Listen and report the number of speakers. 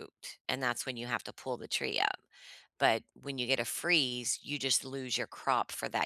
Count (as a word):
one